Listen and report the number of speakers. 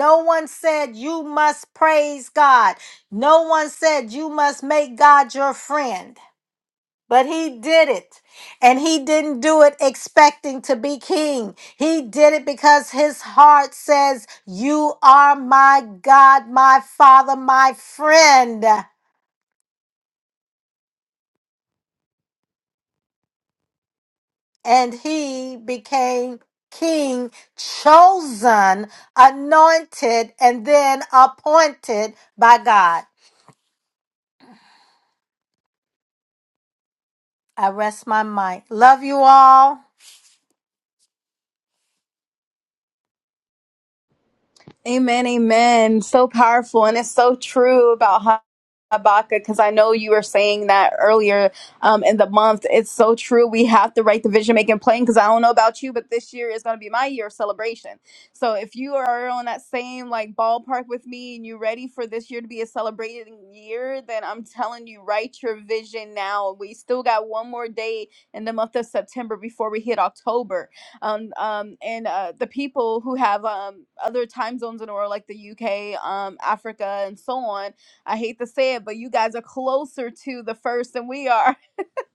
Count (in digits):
2